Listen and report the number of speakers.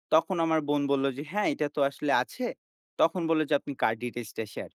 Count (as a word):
one